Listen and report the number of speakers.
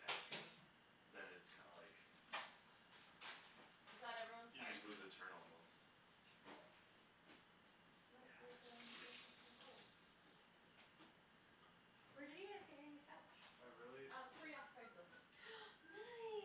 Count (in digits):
4